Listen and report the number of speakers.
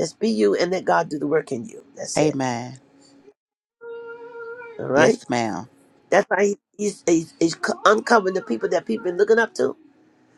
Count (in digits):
2